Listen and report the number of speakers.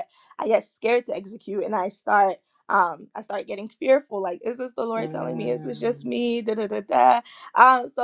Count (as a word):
one